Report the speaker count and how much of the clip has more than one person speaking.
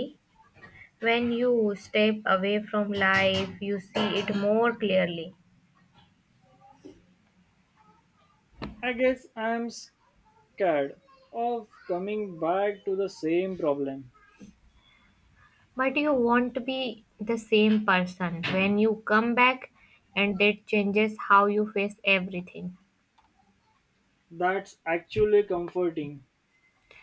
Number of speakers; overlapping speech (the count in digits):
2, no overlap